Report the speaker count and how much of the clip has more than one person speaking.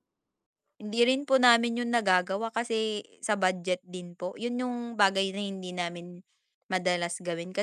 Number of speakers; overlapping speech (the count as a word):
one, no overlap